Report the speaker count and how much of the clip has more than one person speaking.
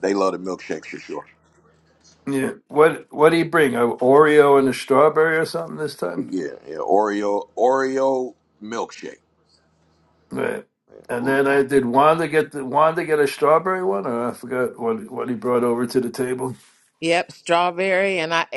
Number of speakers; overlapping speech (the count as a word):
three, about 1%